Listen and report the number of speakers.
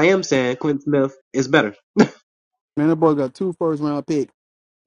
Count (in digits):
2